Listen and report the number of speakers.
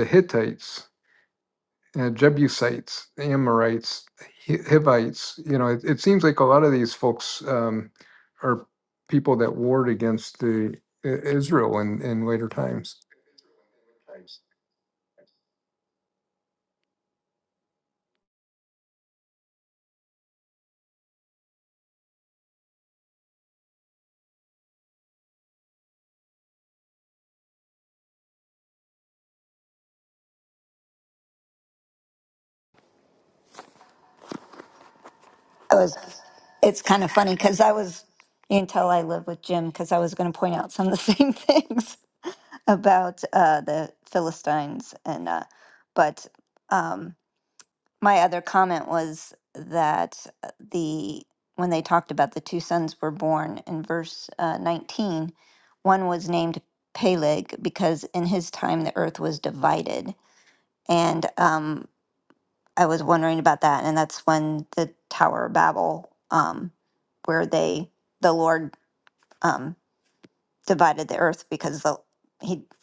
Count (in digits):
2